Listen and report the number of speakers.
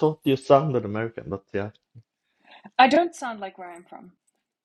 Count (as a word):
two